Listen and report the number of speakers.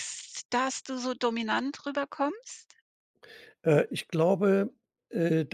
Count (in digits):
2